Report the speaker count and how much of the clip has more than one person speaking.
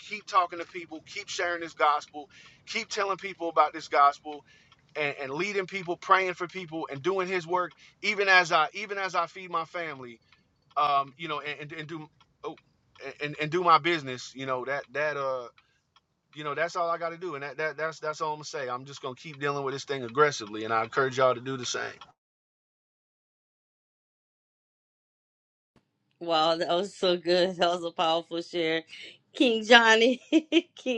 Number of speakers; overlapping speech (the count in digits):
2, no overlap